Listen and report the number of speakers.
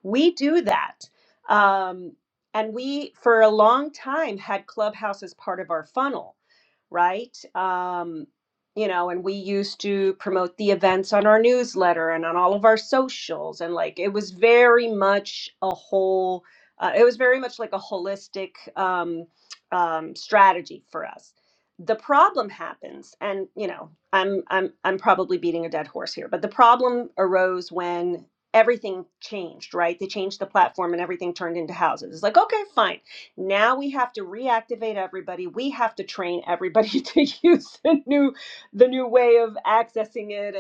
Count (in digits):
1